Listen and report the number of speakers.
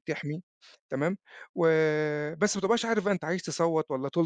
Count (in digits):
1